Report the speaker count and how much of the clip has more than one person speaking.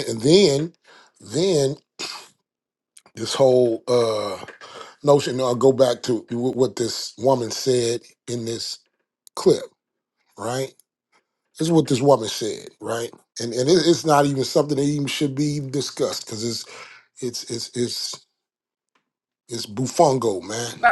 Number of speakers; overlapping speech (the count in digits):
1, no overlap